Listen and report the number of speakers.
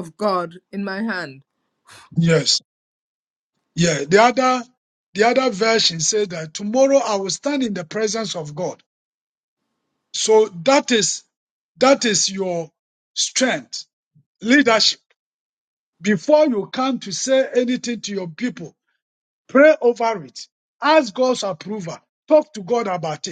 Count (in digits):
2